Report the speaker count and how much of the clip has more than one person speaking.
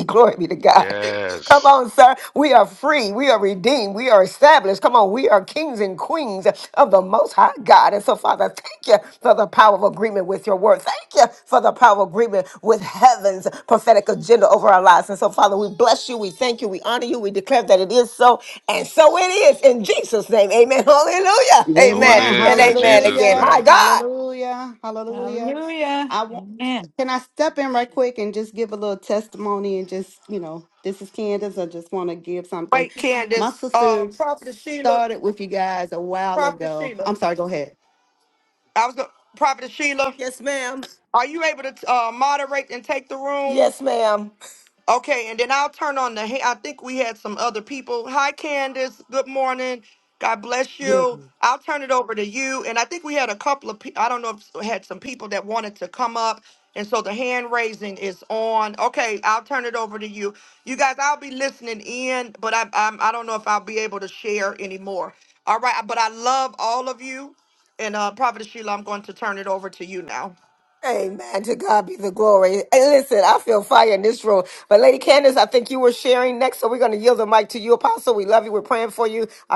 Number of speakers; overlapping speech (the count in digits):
5, about 8%